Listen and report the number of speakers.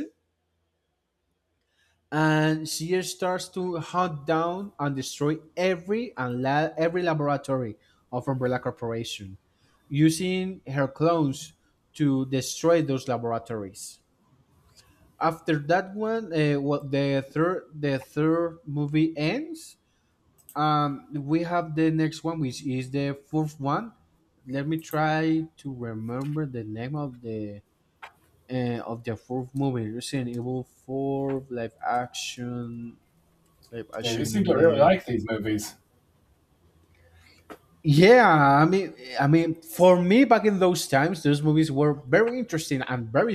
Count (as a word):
two